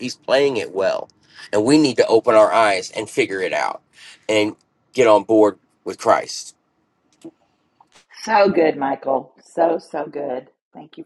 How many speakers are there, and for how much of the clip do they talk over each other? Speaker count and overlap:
2, no overlap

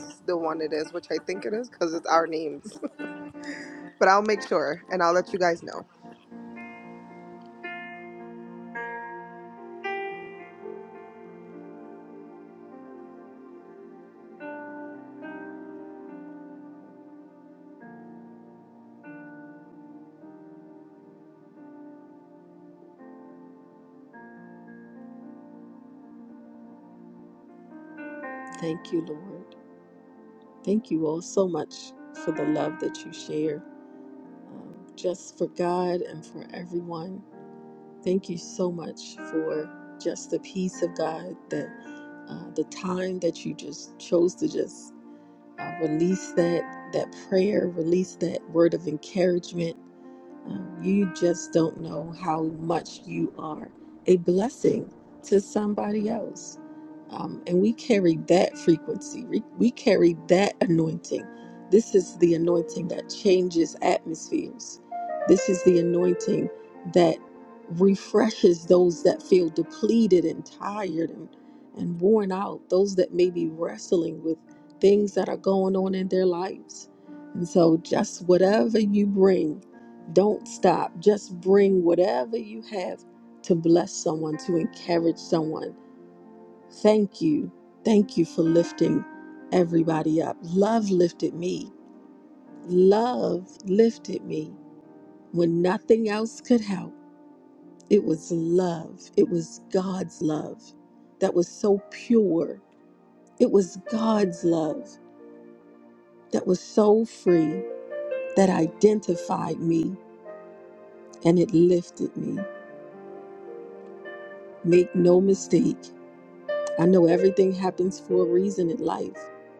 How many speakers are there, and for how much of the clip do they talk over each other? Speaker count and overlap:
2, no overlap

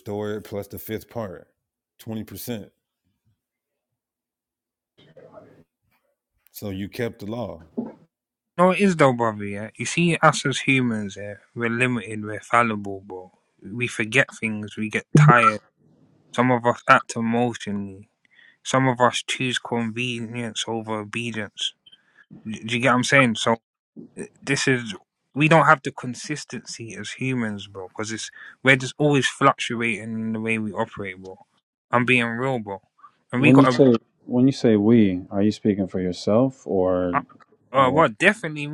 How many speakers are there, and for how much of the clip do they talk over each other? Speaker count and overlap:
3, about 2%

